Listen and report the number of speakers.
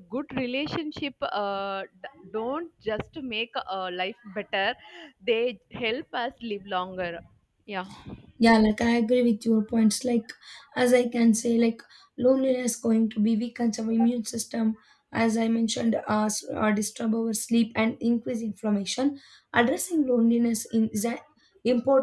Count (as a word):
two